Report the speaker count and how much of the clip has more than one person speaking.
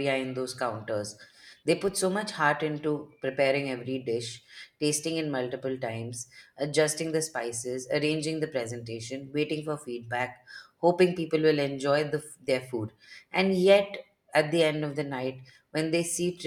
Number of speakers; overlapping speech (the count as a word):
one, no overlap